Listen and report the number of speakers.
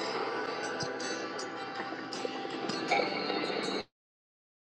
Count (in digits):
0